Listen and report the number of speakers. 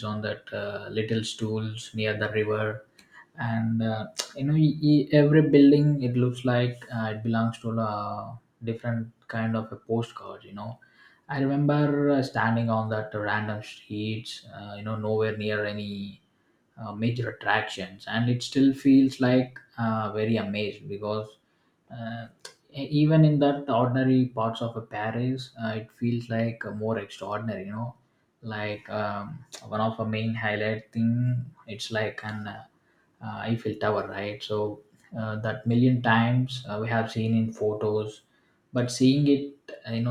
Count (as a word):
one